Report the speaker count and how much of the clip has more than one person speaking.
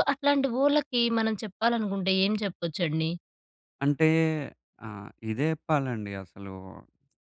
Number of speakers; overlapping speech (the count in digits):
2, no overlap